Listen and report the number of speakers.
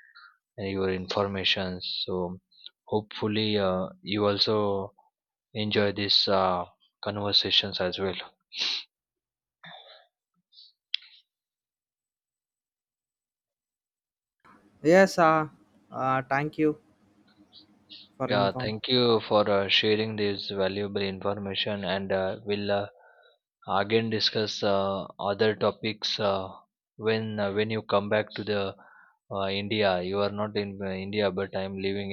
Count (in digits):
2